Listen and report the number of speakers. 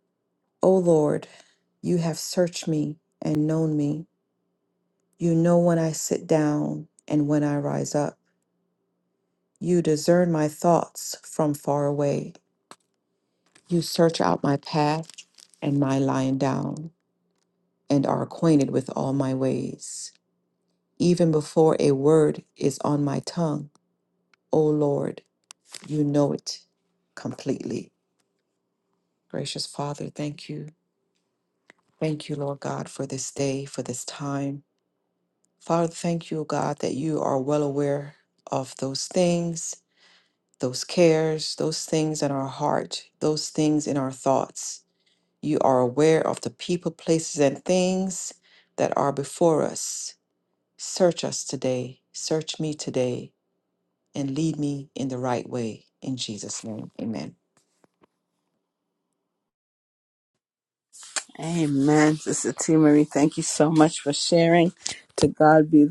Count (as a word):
two